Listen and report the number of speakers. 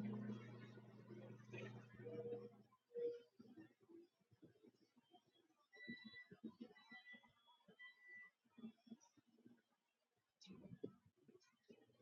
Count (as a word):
zero